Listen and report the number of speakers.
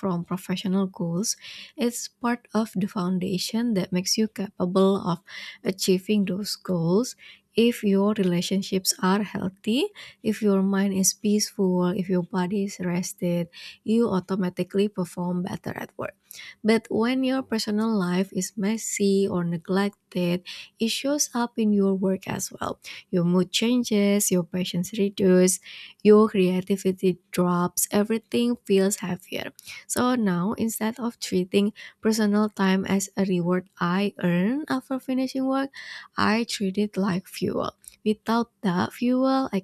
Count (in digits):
1